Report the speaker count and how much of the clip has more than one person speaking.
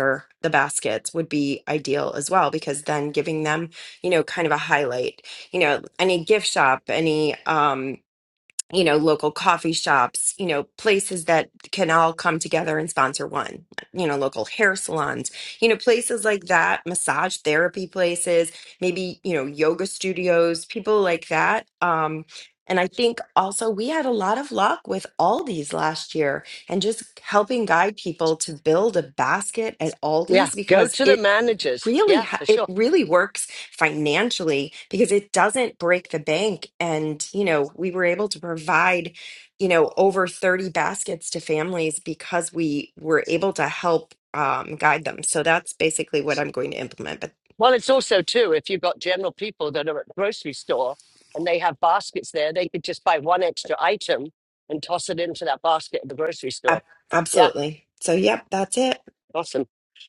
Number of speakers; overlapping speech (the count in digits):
2, about 3%